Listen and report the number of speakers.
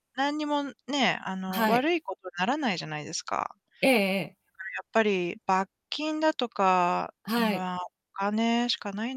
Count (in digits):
2